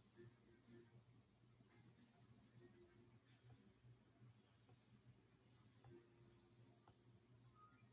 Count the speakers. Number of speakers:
zero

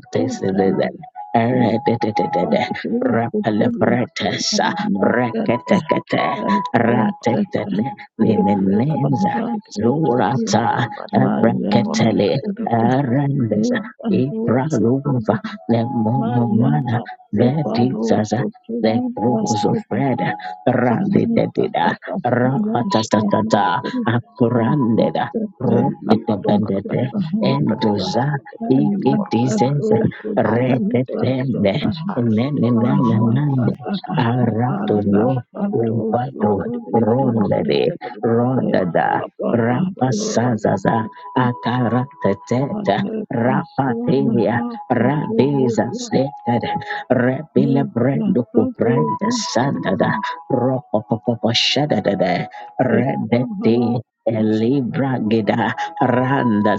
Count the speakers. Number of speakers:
two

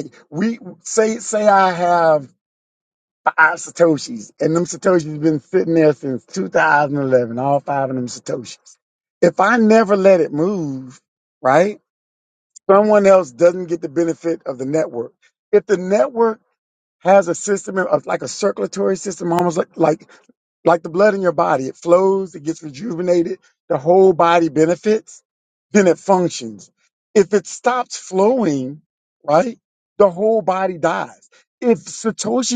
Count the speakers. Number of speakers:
one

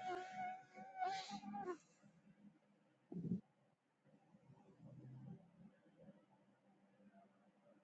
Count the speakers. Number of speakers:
zero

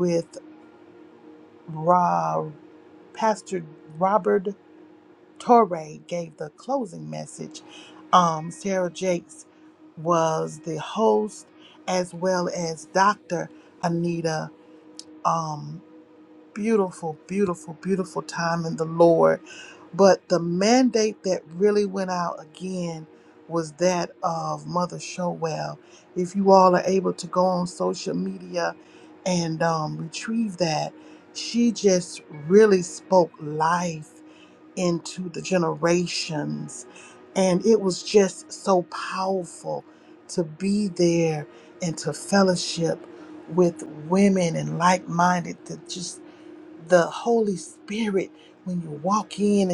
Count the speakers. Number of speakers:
one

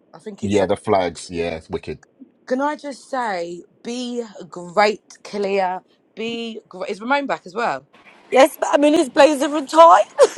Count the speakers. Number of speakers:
three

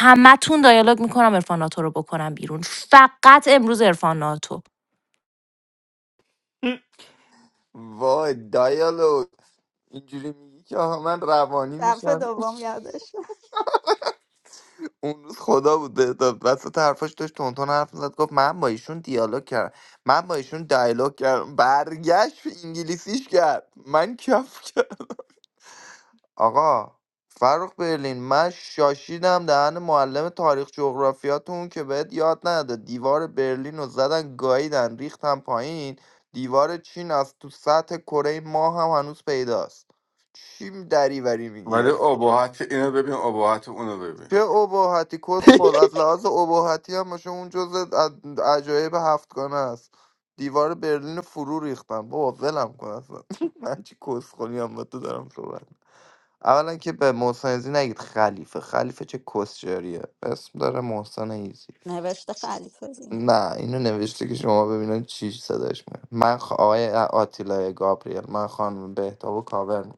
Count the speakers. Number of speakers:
four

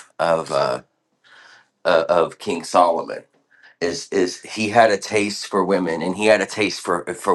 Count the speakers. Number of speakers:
one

